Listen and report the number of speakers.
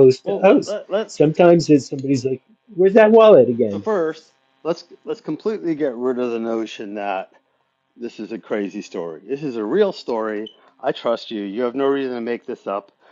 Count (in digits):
2